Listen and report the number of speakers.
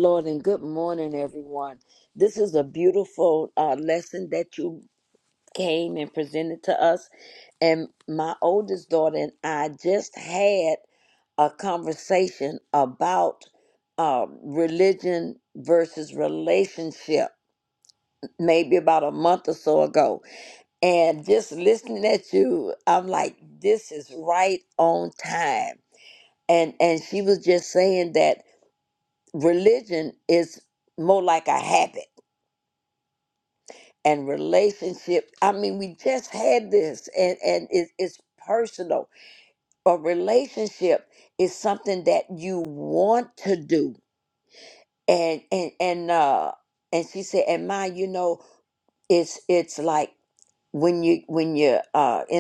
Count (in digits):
1